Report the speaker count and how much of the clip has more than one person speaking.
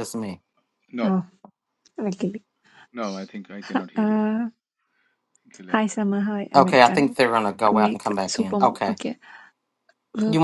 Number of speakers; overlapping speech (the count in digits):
3, about 28%